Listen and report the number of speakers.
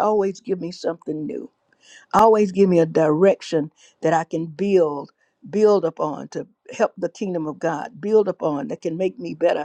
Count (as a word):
one